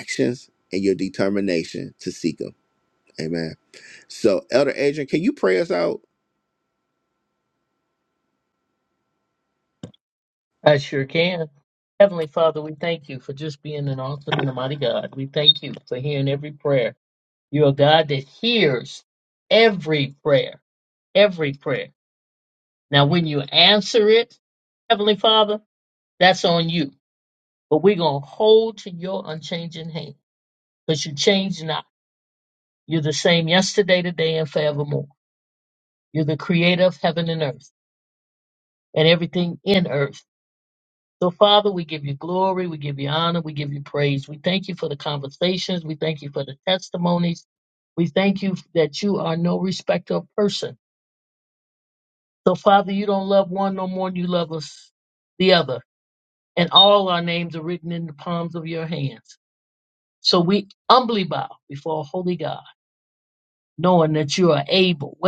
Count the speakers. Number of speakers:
2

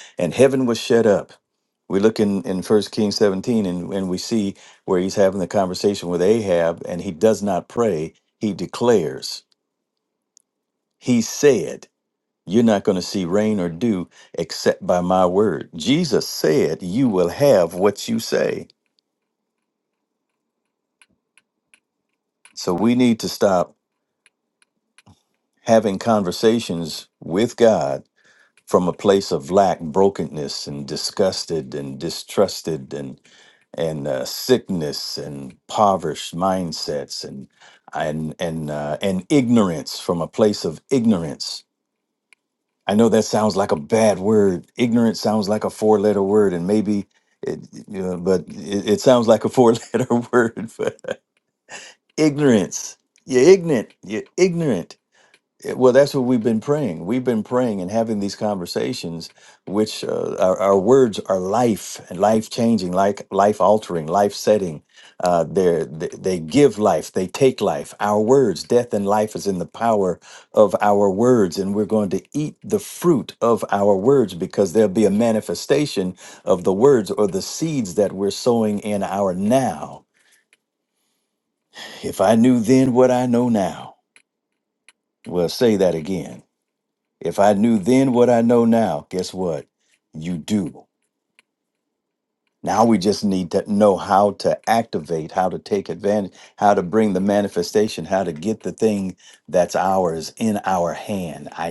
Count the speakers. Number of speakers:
1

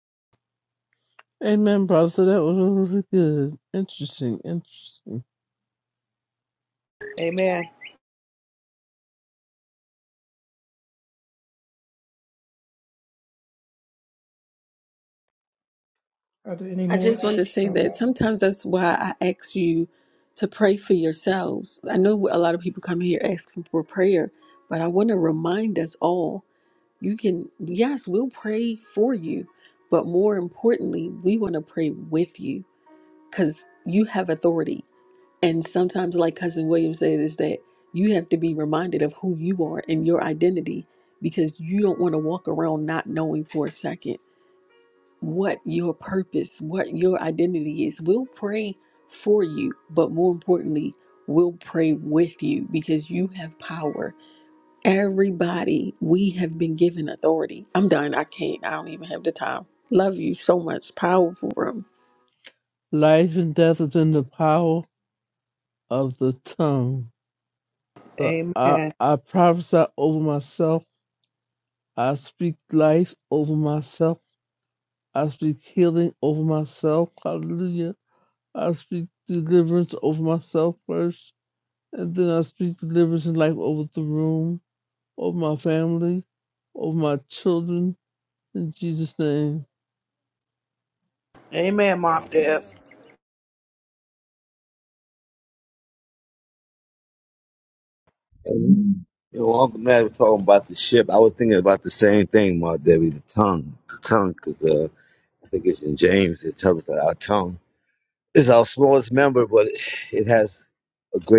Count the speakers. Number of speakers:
5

